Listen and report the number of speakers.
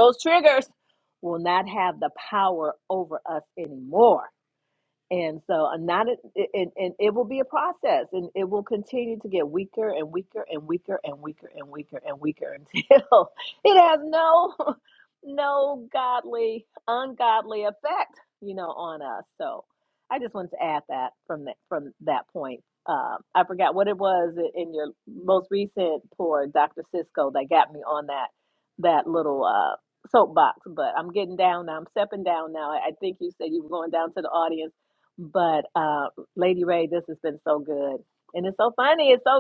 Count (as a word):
one